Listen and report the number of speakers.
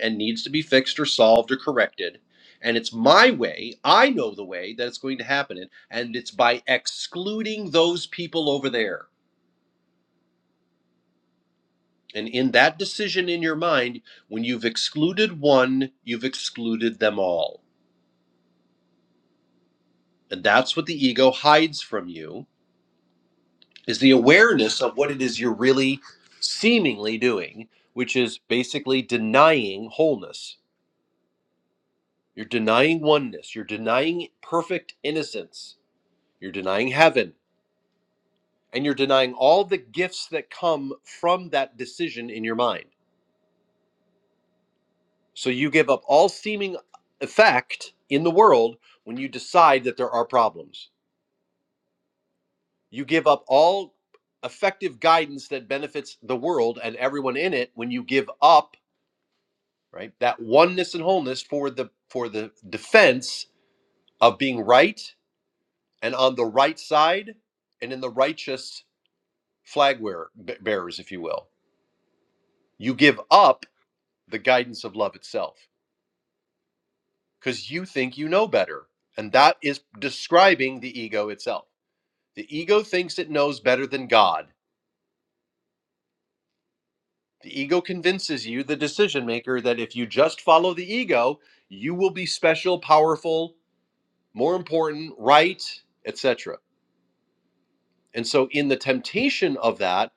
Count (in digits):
1